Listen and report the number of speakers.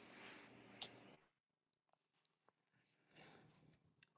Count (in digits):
0